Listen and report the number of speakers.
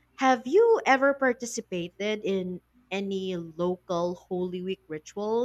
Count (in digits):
1